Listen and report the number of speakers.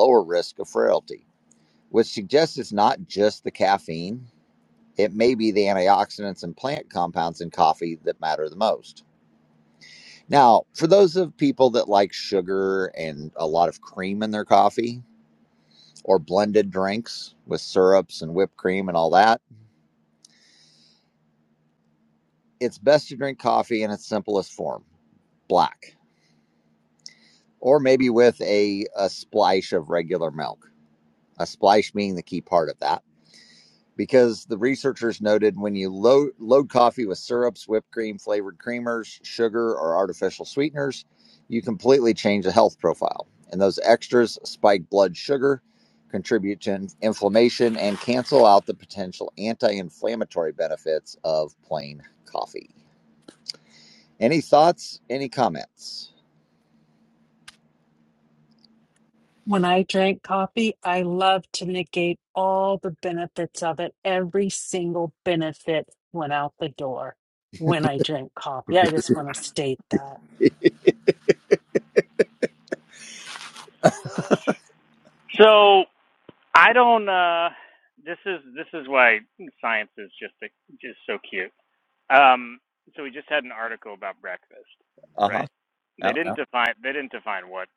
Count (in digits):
3